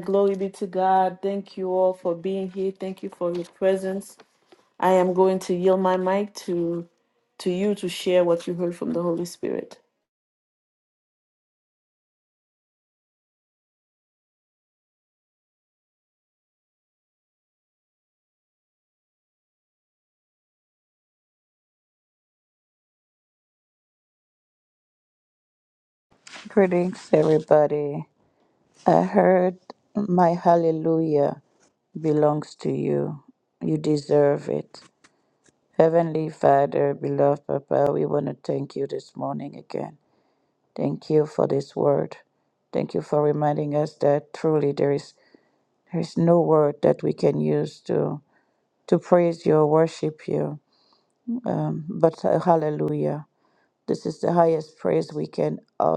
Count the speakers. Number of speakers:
two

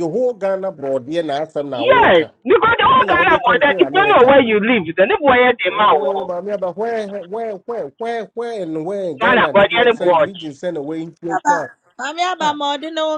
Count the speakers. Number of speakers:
three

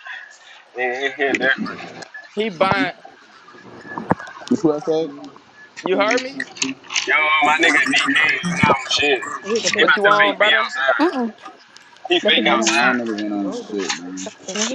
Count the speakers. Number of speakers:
four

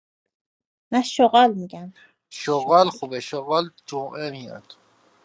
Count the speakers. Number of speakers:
two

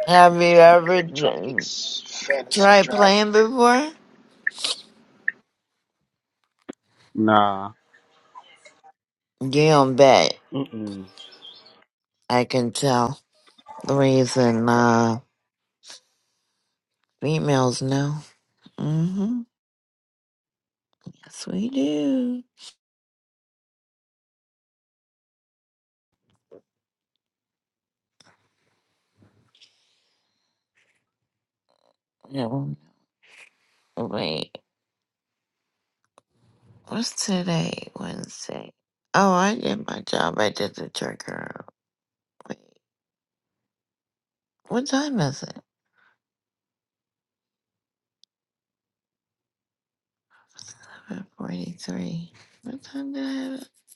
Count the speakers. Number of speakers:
three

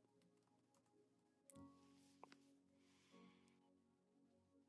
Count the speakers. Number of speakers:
zero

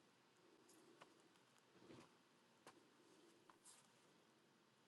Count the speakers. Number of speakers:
zero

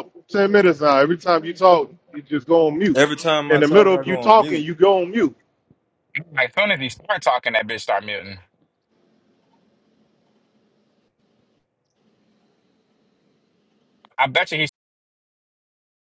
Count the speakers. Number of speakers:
three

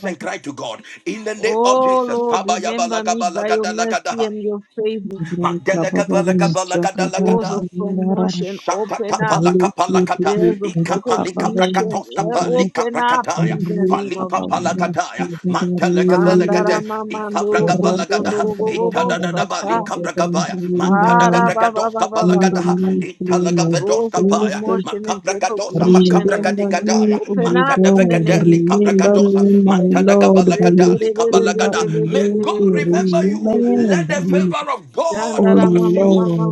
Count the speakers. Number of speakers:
three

